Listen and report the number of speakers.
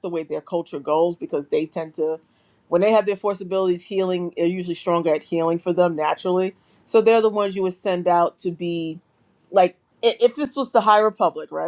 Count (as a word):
one